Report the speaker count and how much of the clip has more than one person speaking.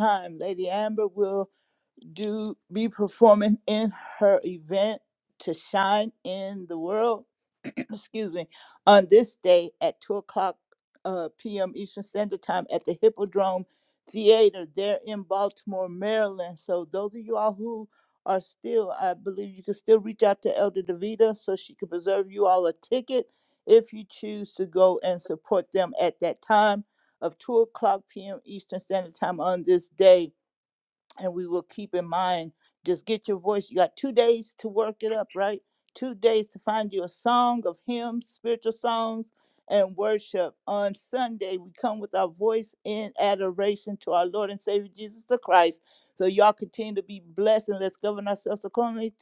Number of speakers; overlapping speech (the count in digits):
1, no overlap